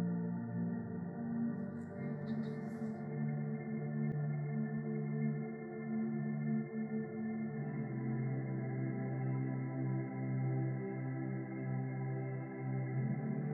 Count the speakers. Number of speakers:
zero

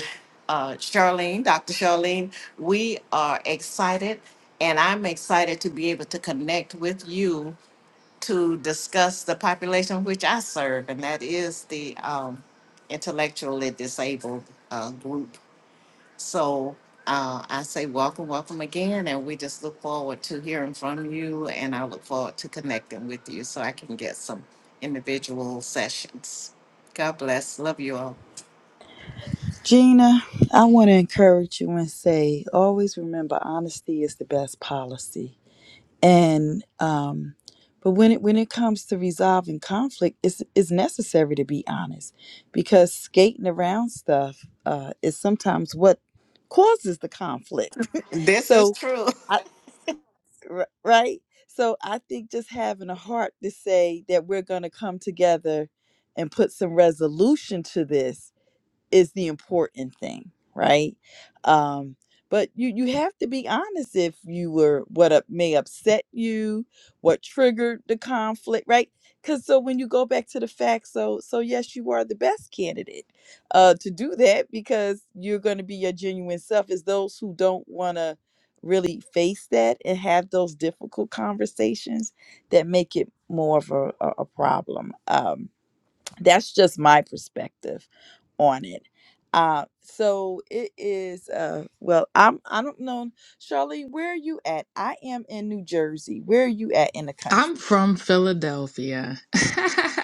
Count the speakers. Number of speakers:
three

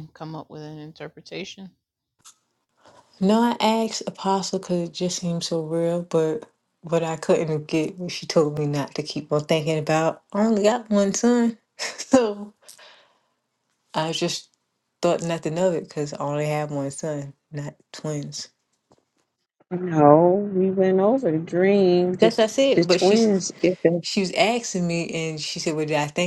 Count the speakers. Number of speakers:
three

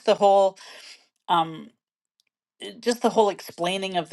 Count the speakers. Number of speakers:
one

